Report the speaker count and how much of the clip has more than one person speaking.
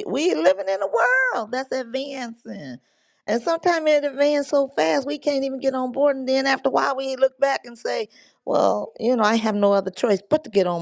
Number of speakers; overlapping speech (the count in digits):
1, no overlap